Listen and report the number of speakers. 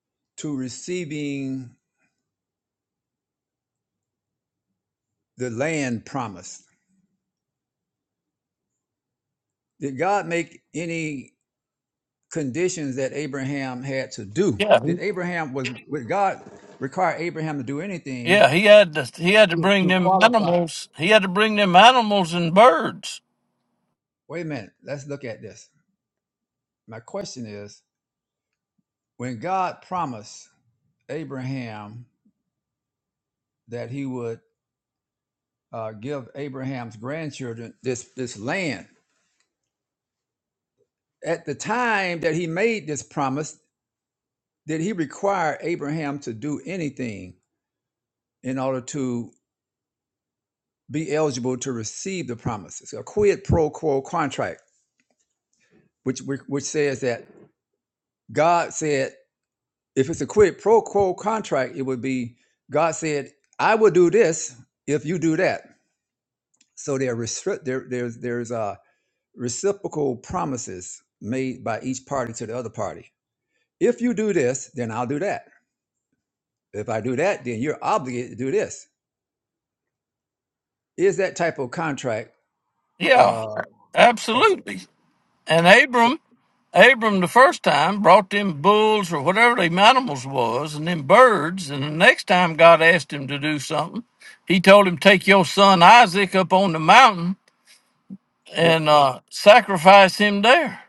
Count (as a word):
two